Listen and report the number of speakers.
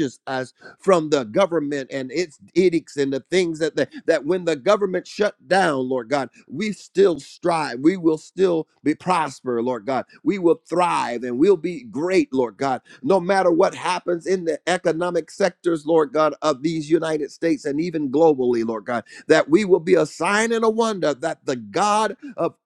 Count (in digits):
1